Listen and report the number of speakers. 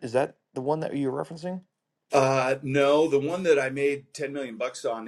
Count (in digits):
2